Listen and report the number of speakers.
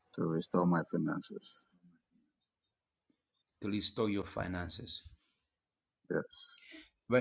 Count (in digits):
2